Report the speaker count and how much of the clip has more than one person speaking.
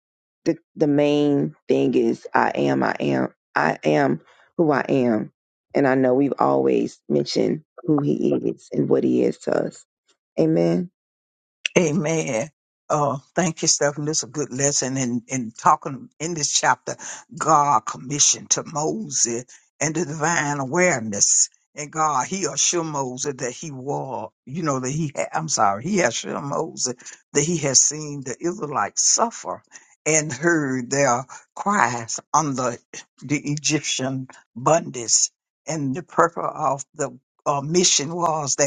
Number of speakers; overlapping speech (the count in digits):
2, no overlap